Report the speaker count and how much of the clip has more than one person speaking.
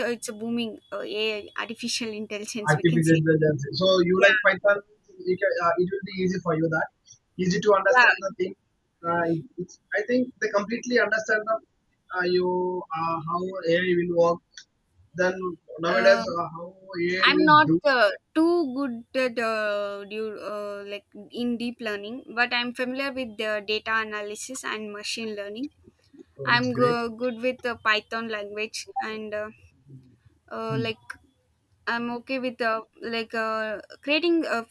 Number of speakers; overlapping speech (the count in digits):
2, about 8%